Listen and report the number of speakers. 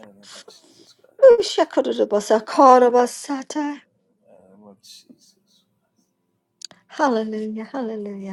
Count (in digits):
2